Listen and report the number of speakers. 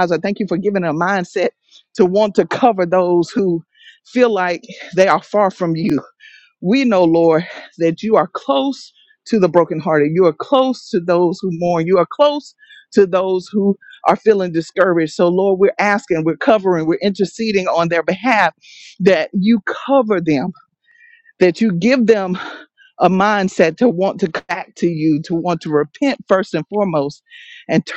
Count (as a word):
one